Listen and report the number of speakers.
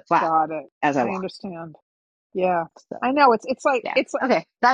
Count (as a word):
two